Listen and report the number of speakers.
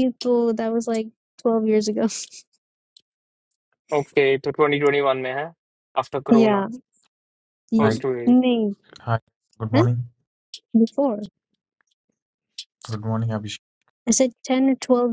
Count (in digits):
3